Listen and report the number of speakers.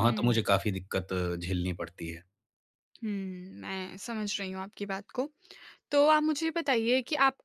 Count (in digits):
2